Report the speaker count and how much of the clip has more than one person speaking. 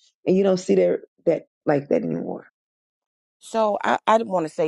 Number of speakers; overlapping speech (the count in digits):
2, no overlap